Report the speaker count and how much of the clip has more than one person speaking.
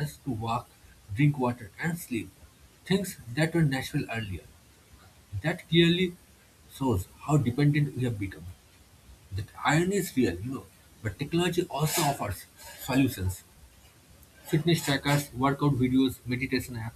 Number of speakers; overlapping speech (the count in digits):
1, no overlap